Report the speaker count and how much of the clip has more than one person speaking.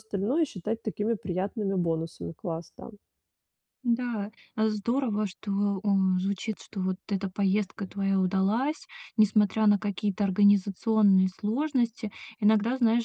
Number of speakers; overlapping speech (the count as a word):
two, no overlap